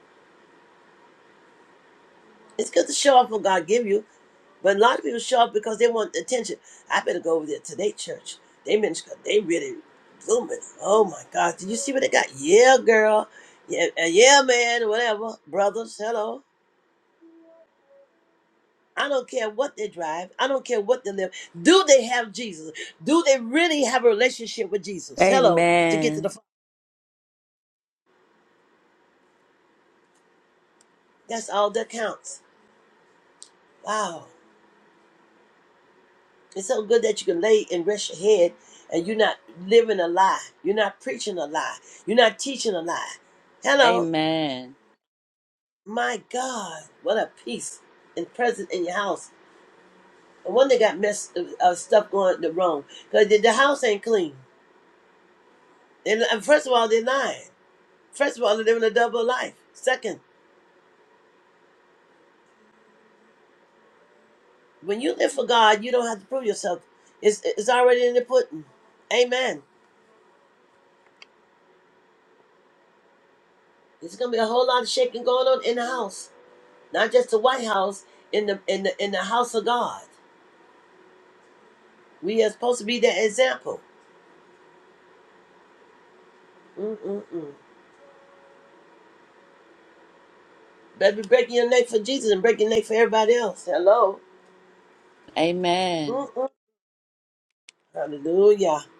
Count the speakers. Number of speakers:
2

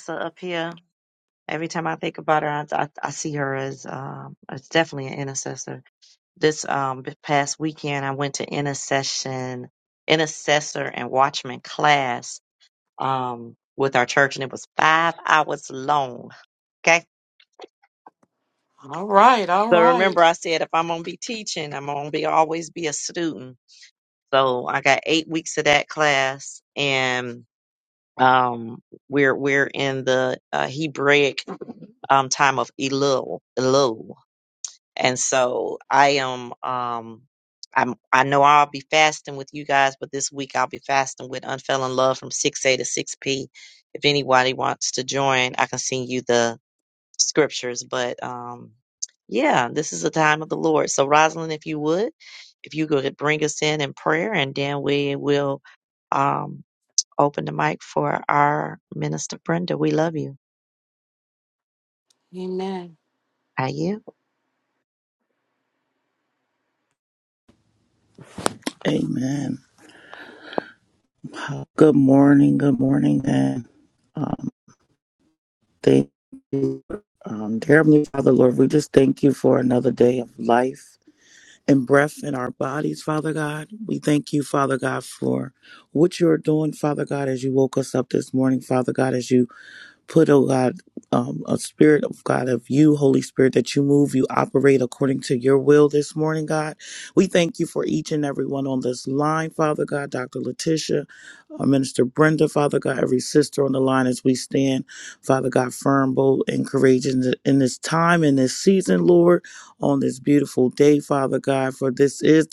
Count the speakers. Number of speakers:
3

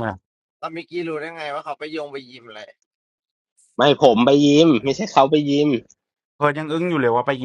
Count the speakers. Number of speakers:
3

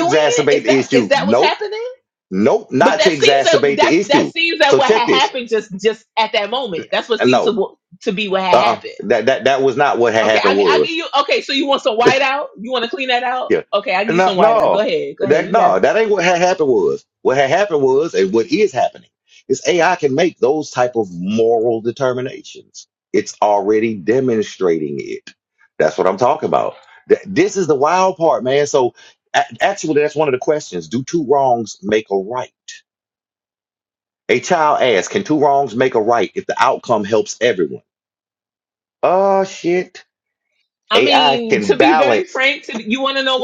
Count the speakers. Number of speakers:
2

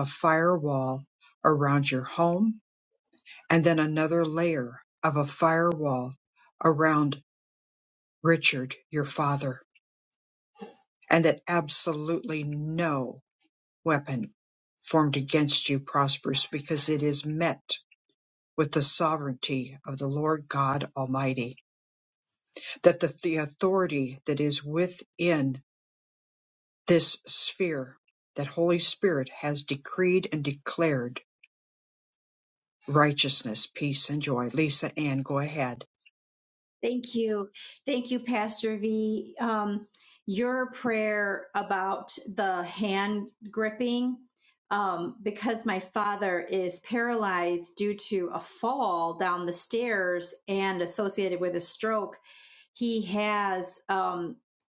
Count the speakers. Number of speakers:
2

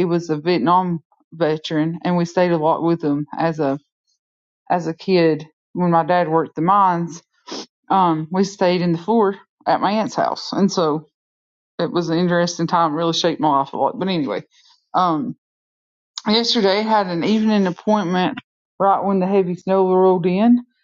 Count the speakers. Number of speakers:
1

